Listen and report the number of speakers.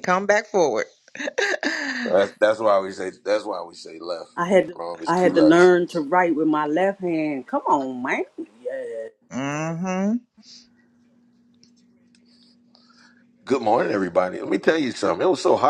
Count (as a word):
three